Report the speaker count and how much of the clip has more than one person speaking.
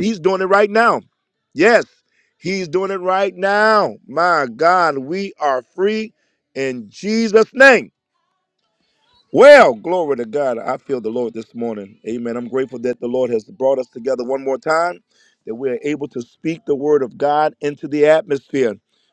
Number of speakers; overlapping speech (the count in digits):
1, no overlap